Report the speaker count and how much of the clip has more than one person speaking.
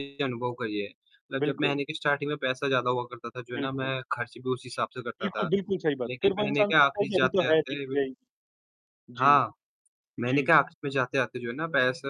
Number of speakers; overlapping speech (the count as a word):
two, about 28%